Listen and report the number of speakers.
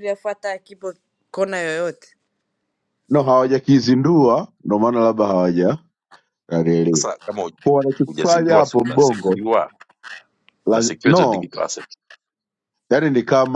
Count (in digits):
3